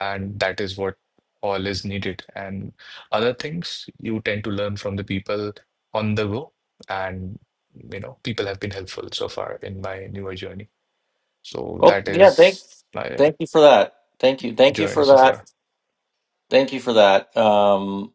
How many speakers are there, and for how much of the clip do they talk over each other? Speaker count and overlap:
2, about 8%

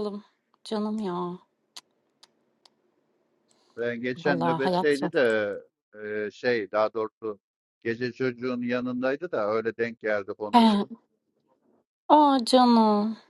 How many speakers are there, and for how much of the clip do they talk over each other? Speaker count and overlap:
2, about 9%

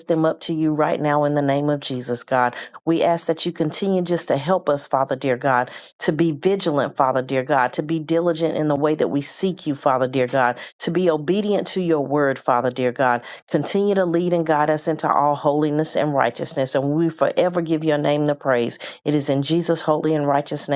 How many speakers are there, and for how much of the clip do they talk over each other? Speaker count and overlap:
1, no overlap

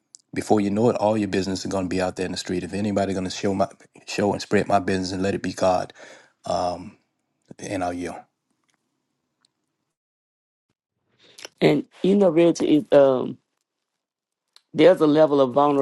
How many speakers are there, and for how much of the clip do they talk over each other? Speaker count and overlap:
2, no overlap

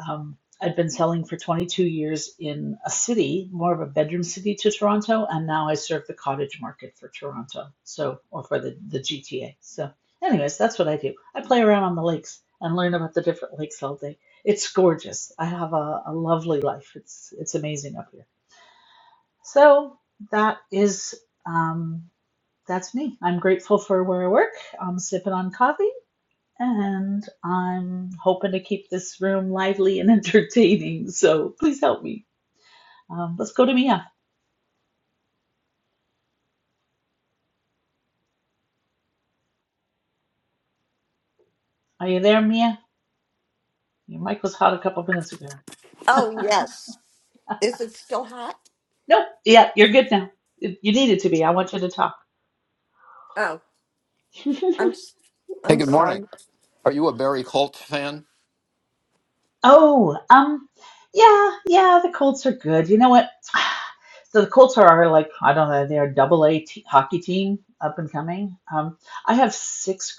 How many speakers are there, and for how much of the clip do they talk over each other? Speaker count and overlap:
3, about 1%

